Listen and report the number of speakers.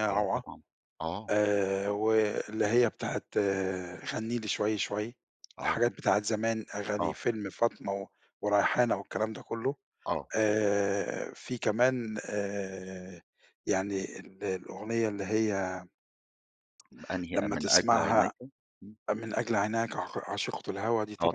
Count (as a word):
two